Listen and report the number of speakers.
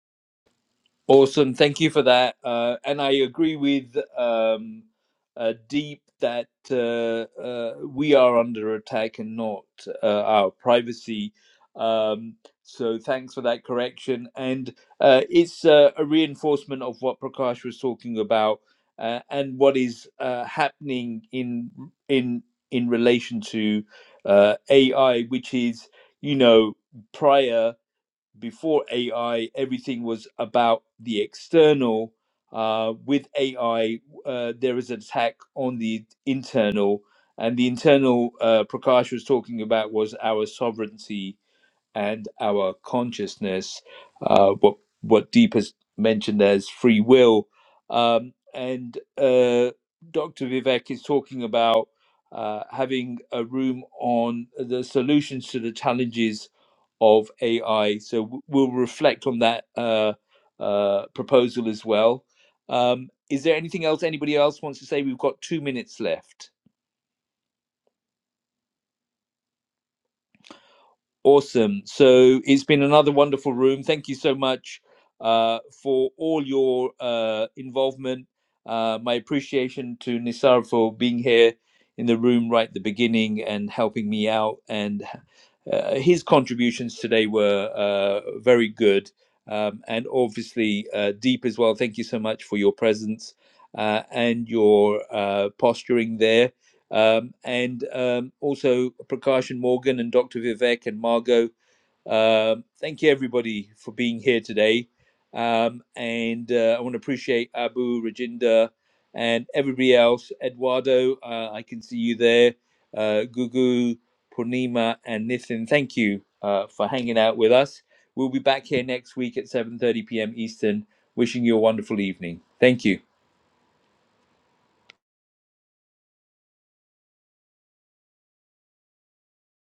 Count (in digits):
1